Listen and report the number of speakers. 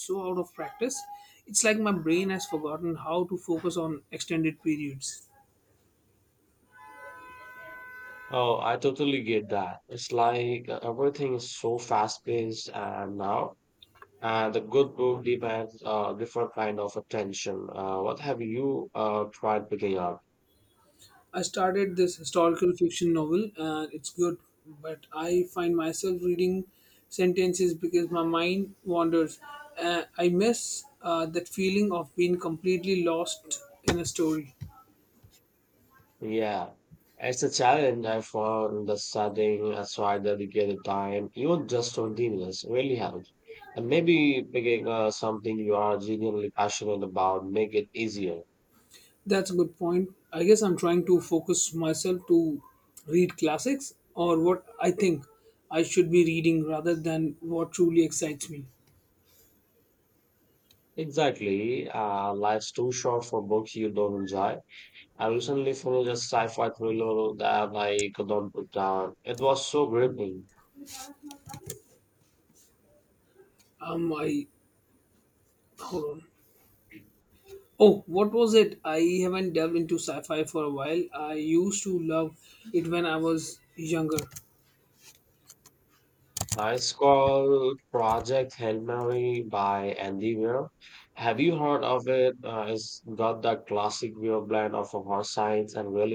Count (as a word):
two